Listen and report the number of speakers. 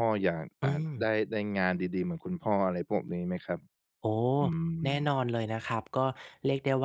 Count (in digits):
2